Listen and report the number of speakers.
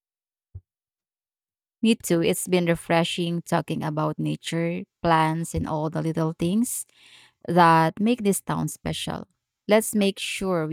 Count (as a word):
one